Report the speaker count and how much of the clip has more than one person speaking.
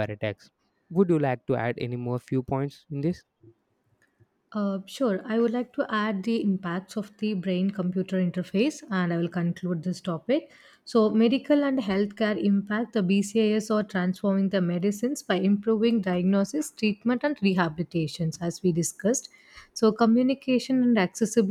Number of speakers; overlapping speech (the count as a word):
two, no overlap